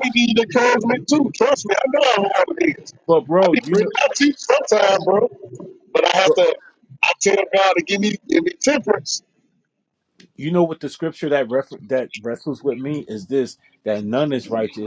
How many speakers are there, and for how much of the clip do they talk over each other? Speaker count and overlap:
2, about 3%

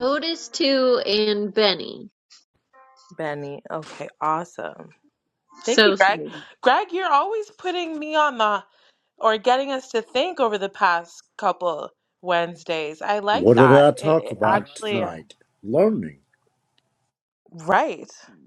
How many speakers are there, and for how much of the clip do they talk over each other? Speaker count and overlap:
3, about 13%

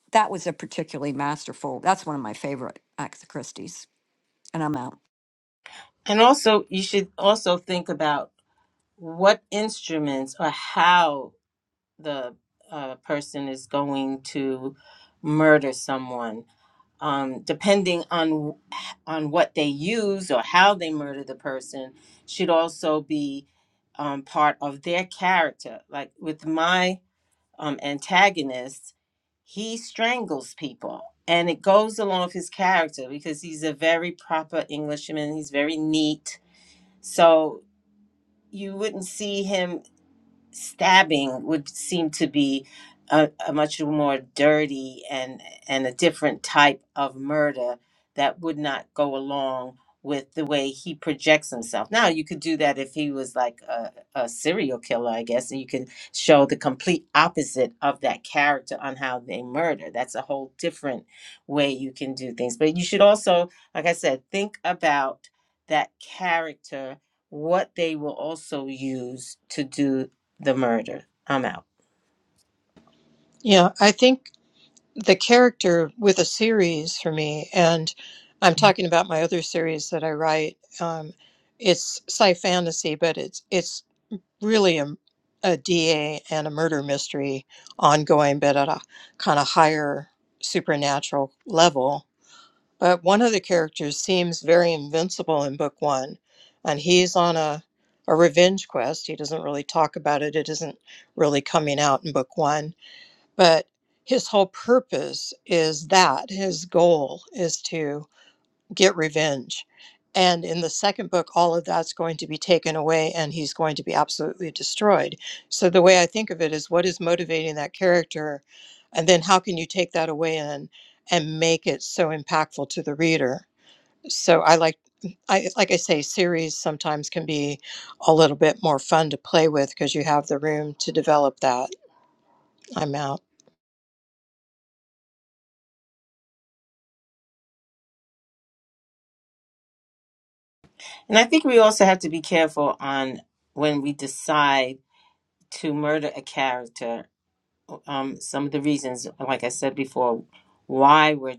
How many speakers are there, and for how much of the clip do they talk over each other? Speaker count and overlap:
3, no overlap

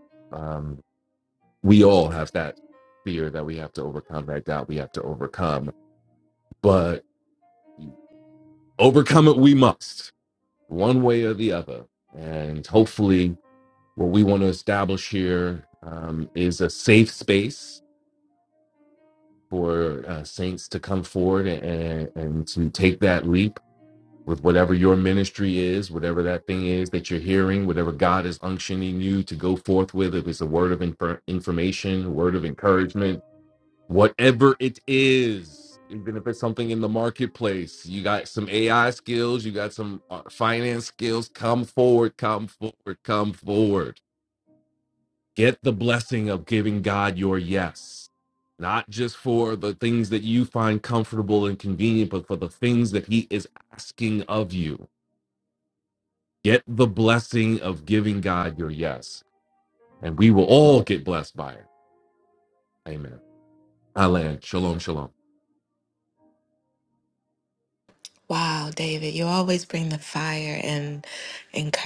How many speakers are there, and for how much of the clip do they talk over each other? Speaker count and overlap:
2, no overlap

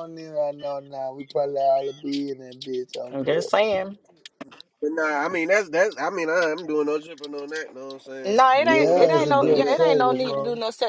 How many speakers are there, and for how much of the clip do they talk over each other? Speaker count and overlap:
3, about 25%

